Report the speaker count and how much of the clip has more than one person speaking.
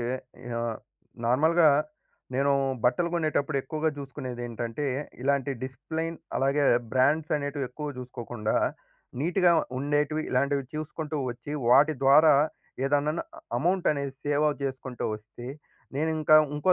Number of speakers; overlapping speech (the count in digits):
1, no overlap